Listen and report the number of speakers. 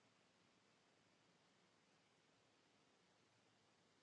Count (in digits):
0